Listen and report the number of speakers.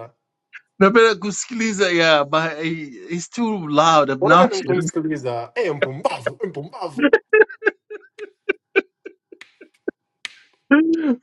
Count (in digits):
2